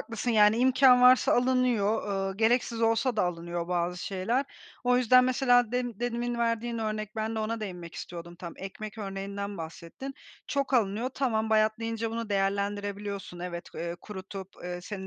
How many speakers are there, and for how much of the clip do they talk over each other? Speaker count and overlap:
1, no overlap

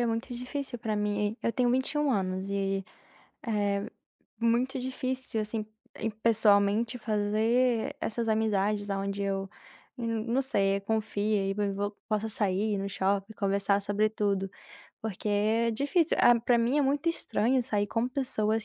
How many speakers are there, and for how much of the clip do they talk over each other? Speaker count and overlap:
1, no overlap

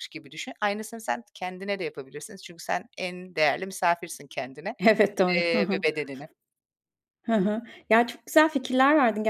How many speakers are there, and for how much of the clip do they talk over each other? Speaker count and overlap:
2, about 6%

